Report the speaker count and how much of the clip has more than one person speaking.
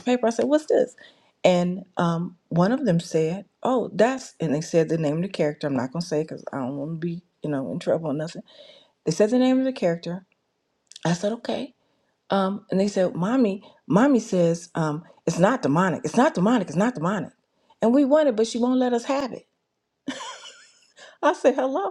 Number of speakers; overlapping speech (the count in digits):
1, no overlap